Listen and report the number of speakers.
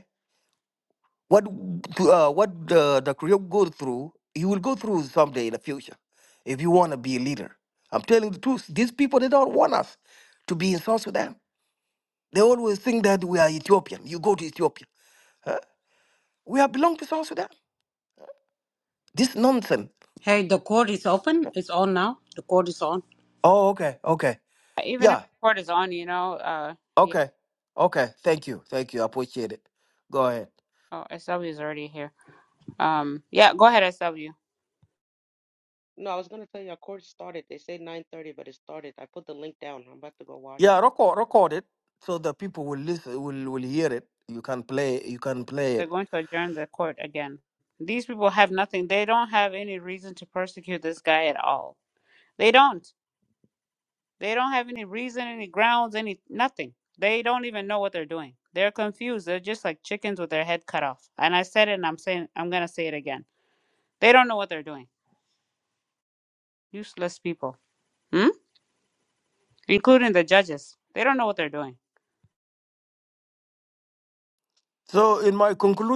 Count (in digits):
4